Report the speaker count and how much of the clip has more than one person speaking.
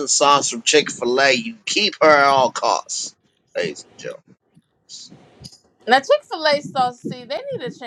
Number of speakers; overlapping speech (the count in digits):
2, no overlap